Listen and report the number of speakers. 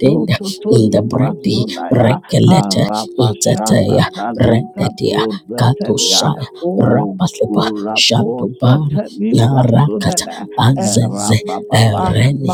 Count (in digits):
2